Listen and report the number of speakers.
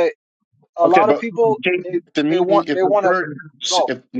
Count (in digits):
2